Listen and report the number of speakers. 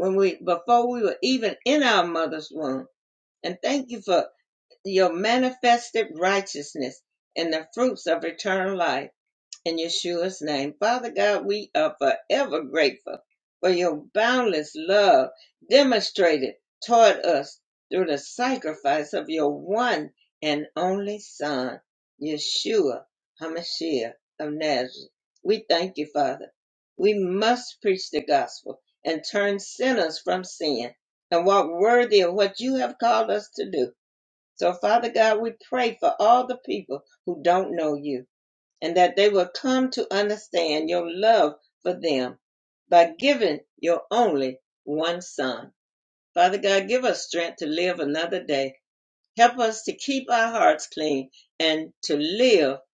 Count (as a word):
one